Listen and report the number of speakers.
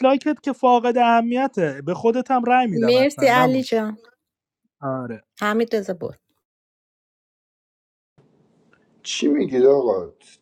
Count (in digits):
3